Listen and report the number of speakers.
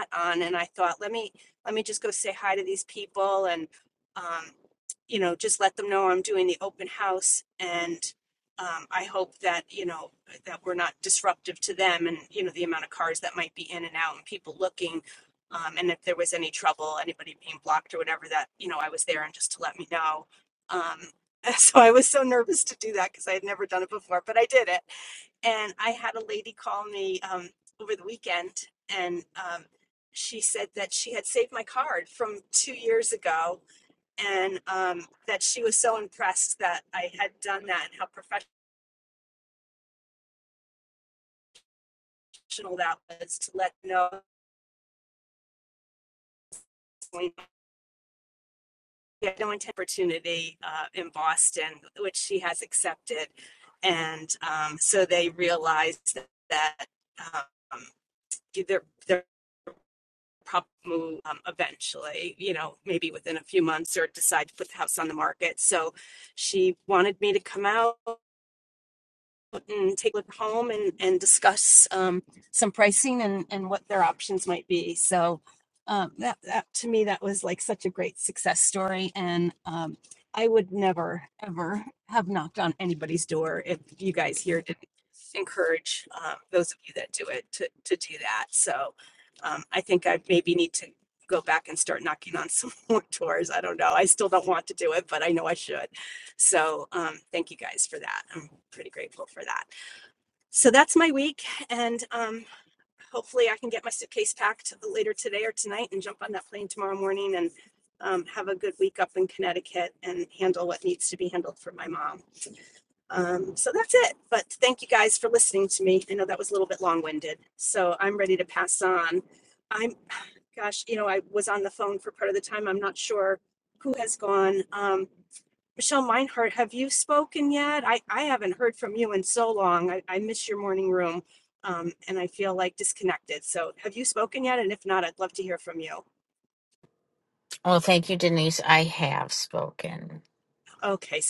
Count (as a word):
two